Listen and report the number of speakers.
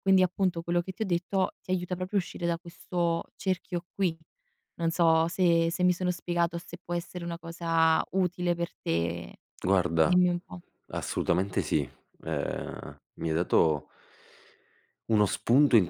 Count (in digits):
2